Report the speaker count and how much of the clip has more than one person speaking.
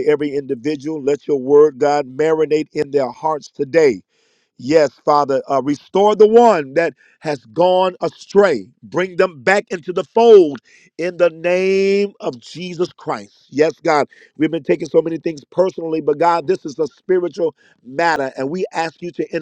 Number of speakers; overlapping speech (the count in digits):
1, no overlap